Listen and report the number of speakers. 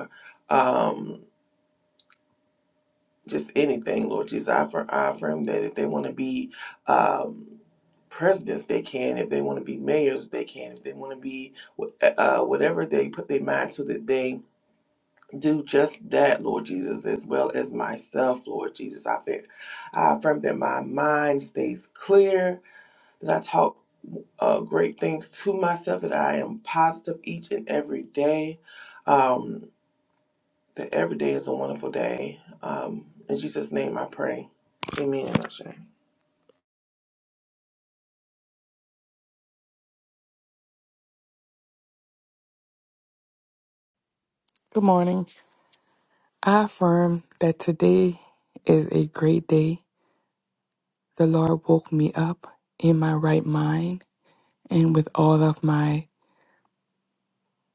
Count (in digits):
2